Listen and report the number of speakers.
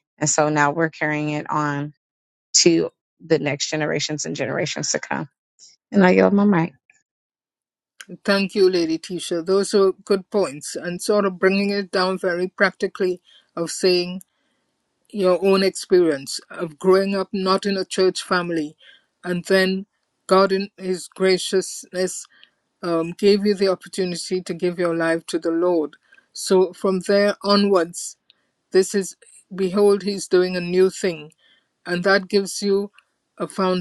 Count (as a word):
two